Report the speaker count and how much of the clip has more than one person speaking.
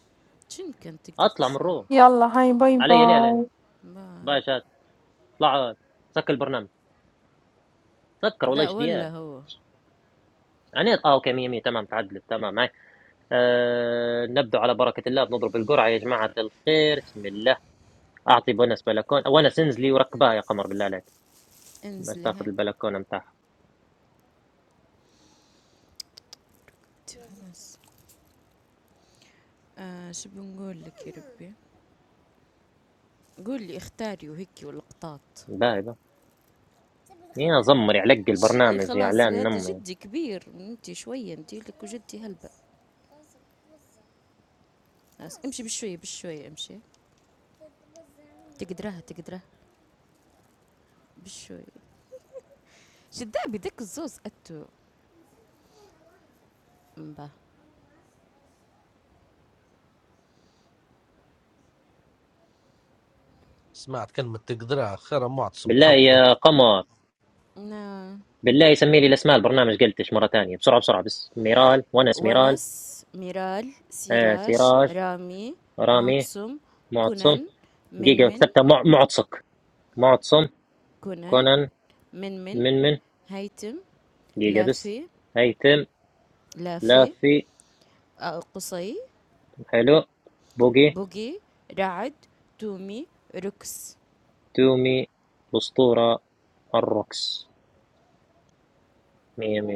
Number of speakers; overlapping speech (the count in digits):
4, about 8%